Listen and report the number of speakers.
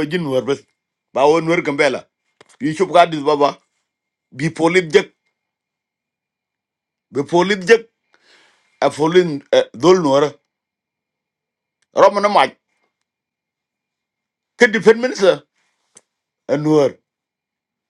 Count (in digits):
1